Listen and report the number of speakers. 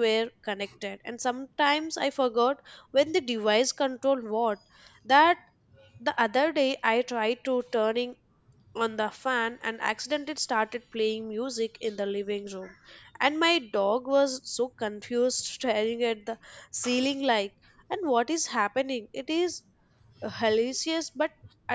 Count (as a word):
one